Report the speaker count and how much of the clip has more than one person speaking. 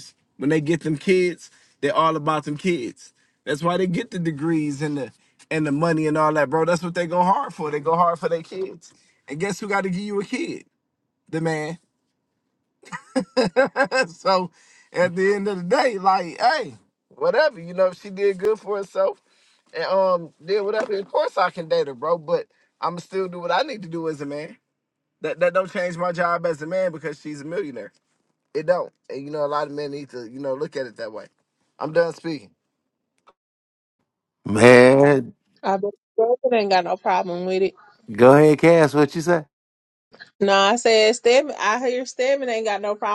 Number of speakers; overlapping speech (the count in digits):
3, no overlap